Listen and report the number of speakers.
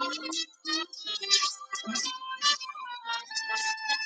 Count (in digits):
0